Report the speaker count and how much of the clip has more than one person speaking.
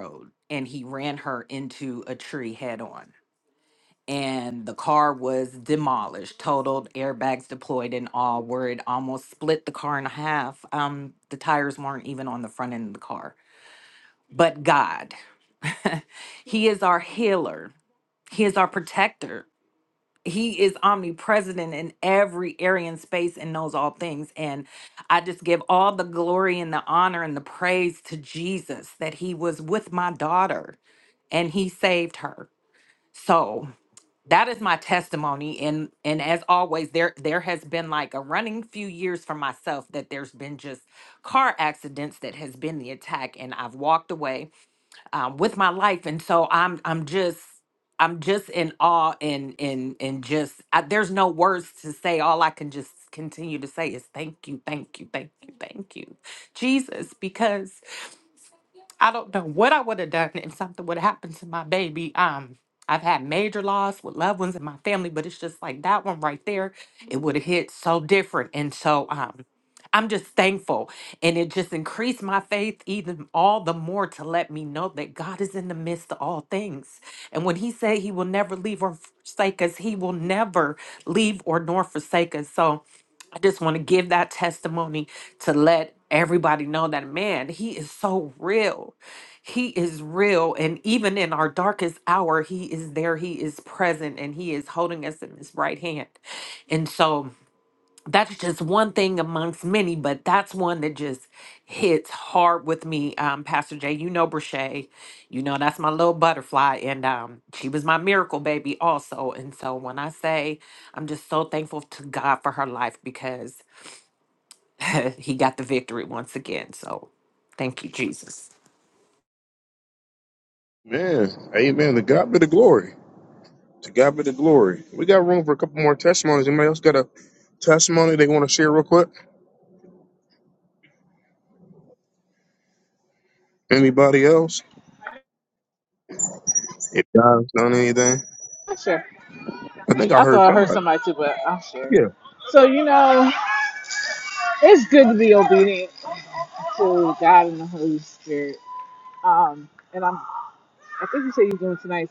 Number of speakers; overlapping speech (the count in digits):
3, under 1%